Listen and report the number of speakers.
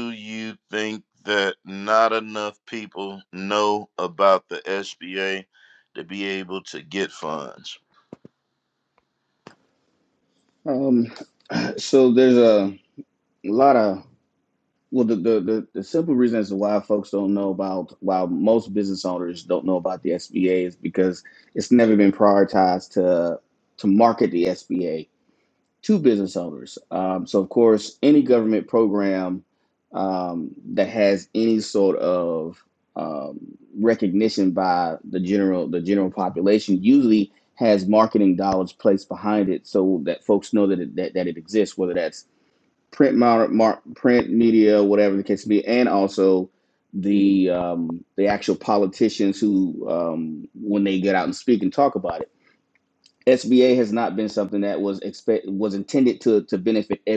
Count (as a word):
two